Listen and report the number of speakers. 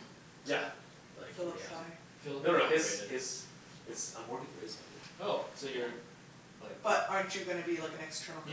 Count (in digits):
3